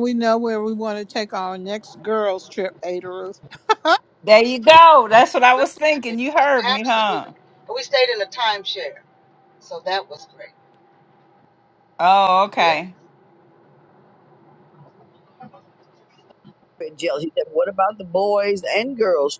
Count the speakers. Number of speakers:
four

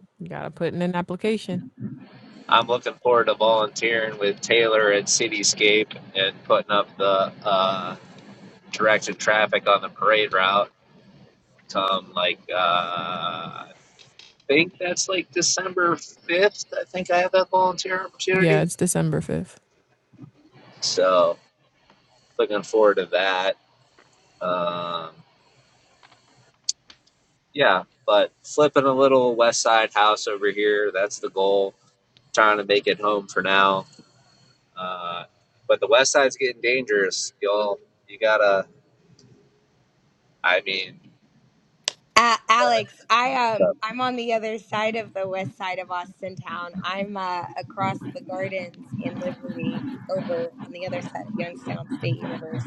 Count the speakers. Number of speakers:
three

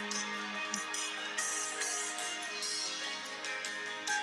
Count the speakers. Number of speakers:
zero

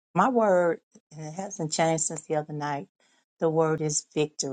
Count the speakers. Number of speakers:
one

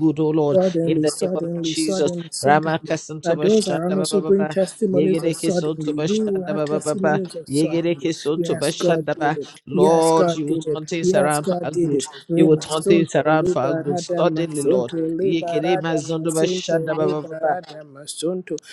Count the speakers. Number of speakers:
two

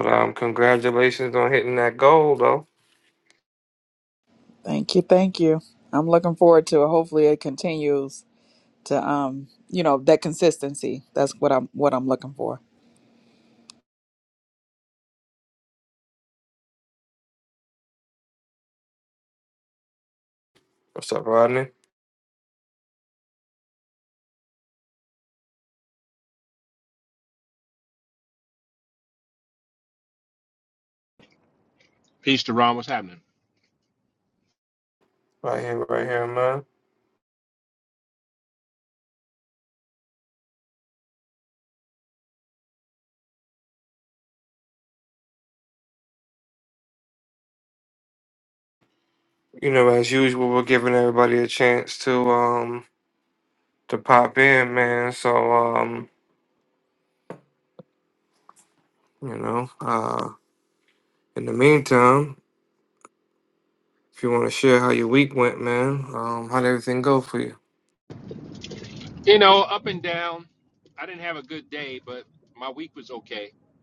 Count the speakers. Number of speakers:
three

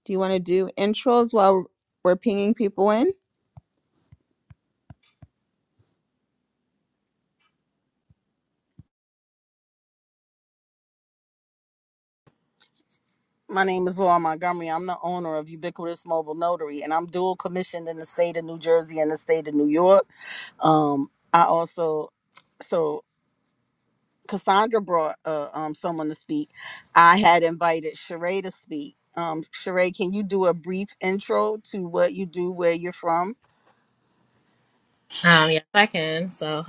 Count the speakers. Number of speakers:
three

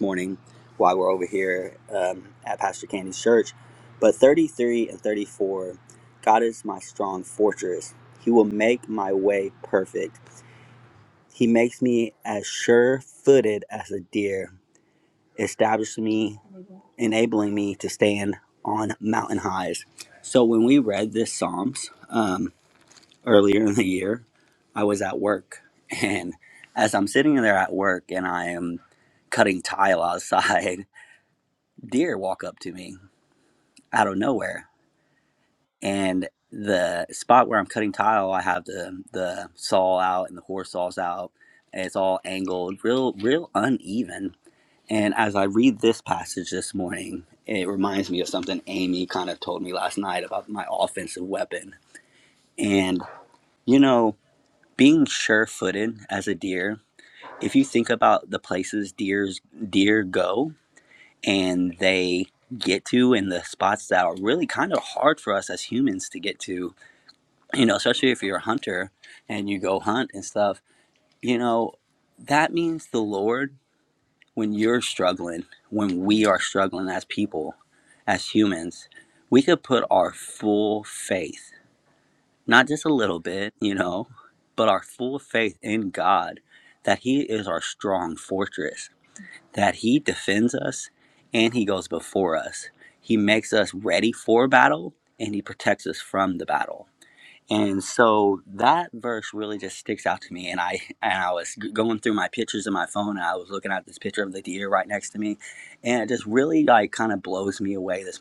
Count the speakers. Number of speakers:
one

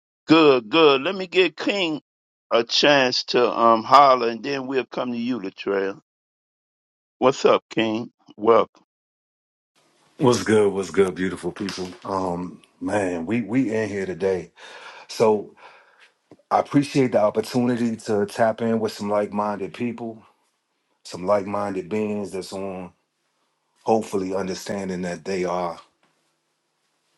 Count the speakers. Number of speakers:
two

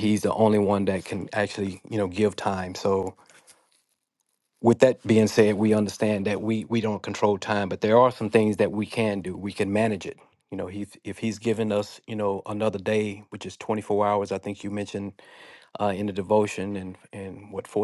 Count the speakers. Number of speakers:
one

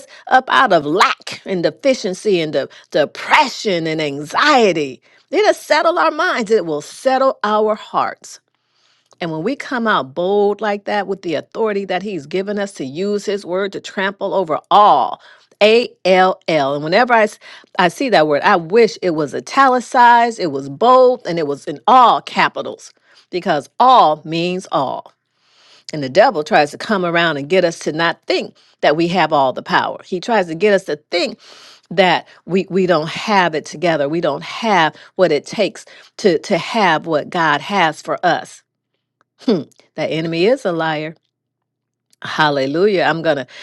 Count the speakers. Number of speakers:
one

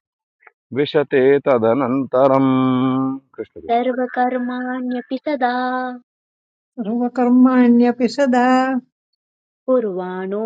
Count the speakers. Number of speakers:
three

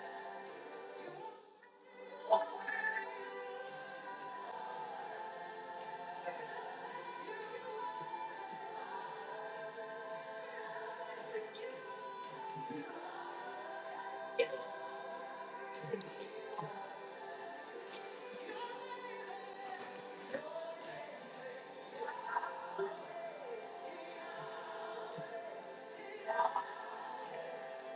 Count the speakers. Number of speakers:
zero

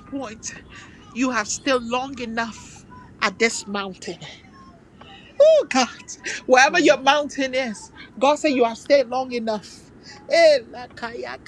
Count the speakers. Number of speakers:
one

